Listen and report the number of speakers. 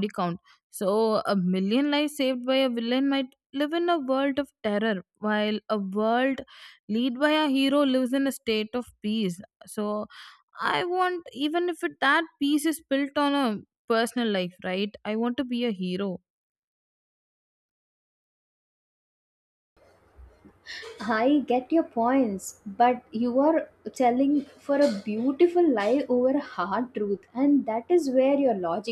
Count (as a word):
two